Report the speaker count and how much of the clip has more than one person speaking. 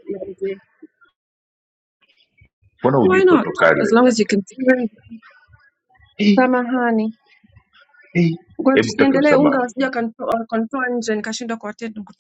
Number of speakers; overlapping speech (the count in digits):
2, about 13%